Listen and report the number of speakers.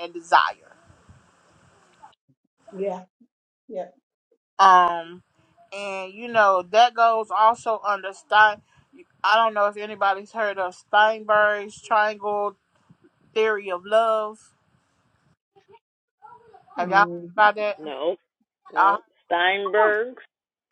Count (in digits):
3